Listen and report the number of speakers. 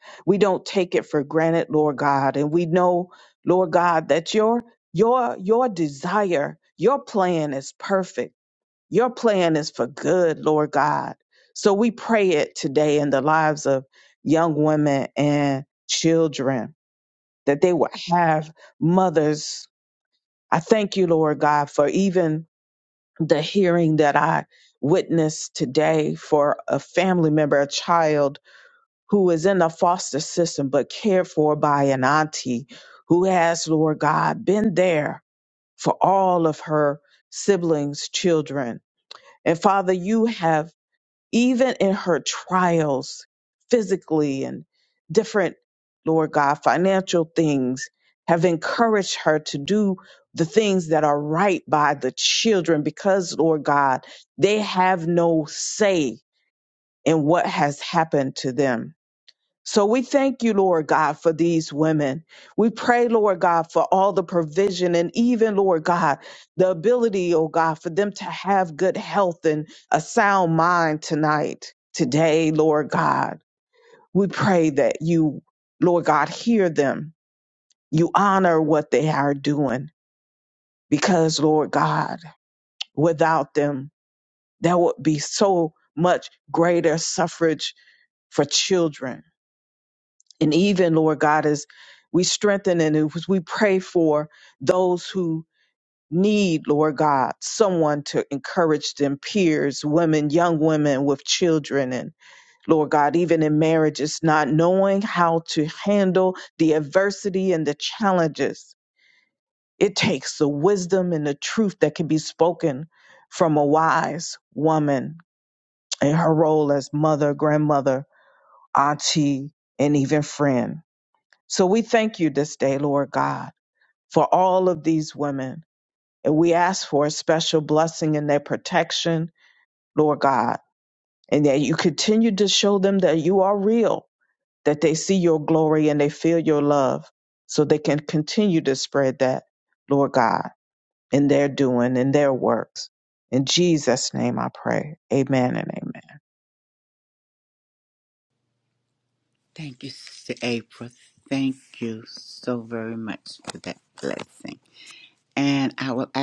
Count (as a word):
two